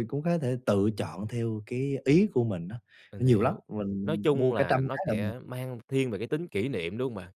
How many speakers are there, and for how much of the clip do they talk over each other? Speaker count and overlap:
two, about 23%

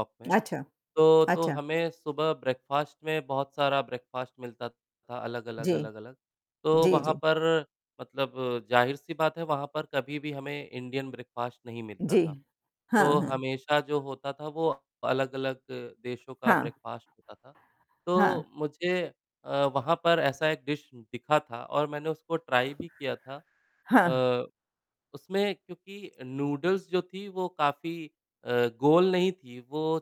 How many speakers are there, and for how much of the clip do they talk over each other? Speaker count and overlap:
two, about 7%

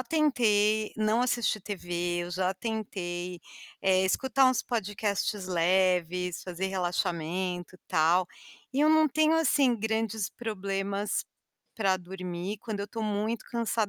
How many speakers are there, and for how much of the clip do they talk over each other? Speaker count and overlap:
one, no overlap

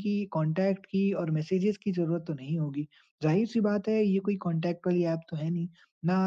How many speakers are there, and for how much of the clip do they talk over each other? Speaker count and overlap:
one, no overlap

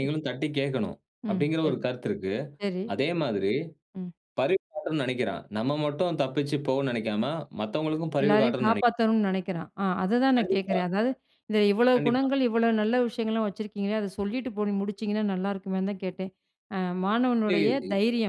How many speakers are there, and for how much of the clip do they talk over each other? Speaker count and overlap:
two, about 14%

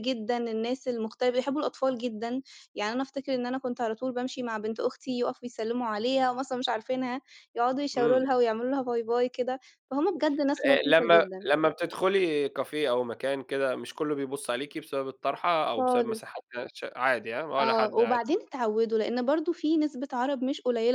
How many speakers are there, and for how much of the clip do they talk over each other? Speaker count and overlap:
two, about 10%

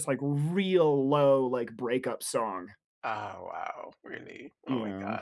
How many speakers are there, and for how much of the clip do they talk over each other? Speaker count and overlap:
two, about 10%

